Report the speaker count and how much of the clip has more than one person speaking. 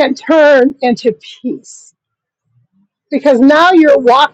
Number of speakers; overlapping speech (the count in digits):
1, no overlap